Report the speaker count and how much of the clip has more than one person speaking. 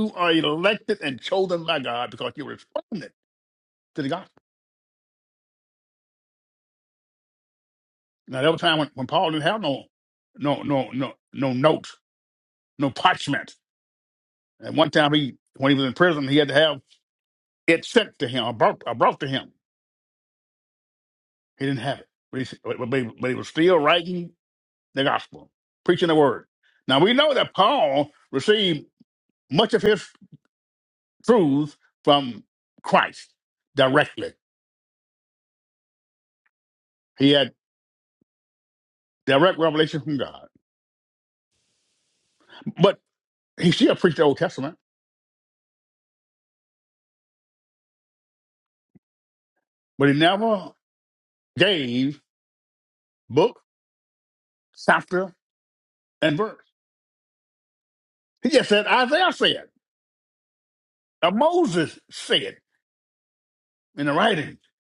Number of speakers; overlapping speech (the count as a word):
one, no overlap